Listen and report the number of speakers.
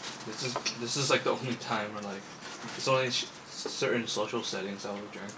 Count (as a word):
one